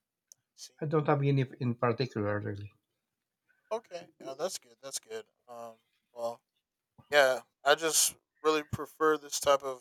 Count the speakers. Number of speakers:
2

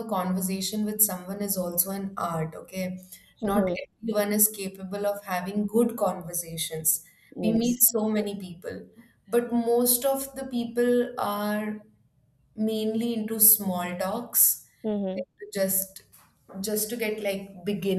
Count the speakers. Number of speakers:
2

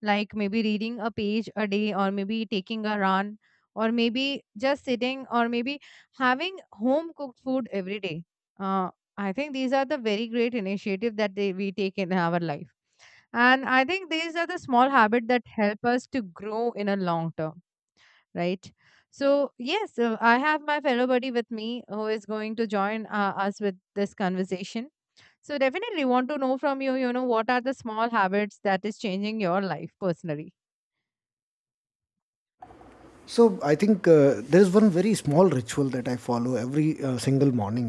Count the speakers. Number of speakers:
2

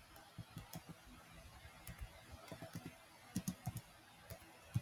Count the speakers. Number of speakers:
0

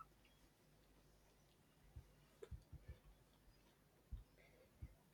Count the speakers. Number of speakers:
0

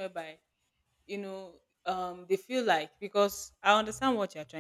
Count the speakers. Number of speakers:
1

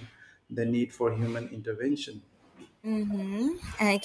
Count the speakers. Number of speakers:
2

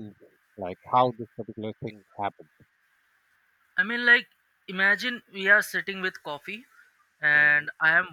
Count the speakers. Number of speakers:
2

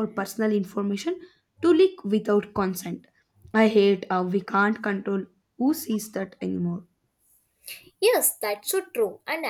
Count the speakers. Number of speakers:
2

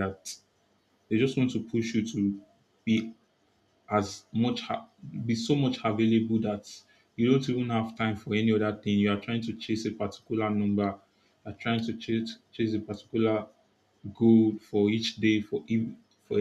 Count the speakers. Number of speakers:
1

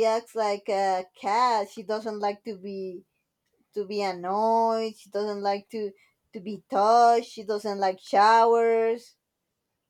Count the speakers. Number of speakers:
1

